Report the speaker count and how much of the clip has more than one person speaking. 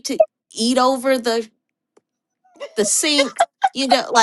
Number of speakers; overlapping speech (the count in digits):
1, no overlap